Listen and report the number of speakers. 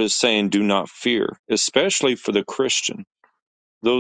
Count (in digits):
1